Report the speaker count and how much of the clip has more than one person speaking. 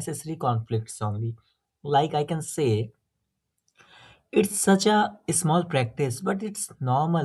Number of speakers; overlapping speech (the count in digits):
1, no overlap